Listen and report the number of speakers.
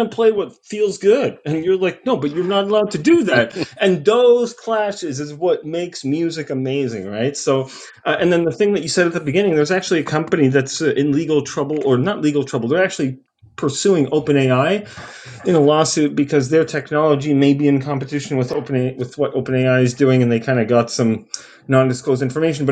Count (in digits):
1